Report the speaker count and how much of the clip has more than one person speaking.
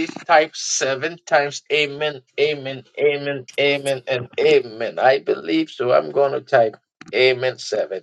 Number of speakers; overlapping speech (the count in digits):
1, no overlap